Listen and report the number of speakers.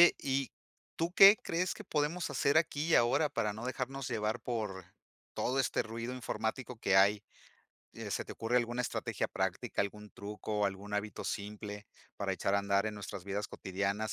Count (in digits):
1